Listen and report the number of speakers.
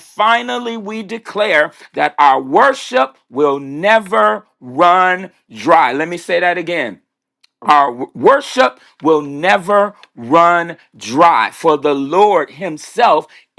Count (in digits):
1